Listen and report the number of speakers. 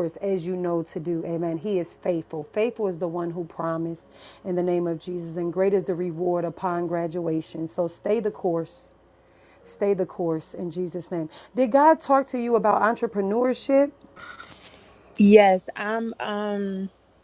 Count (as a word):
two